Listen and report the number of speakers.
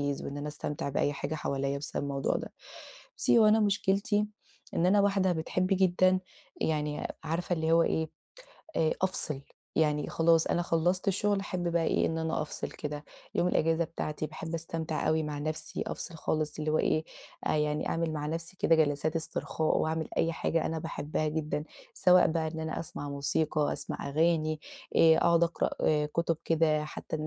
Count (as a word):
one